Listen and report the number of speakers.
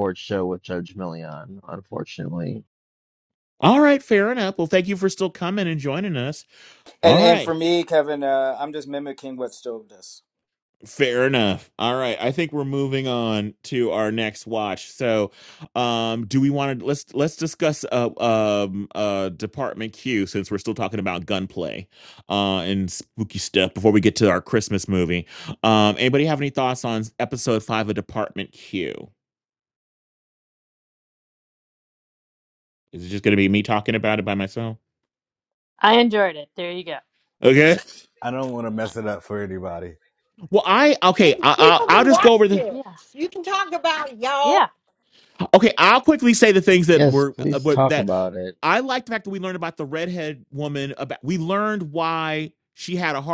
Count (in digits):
6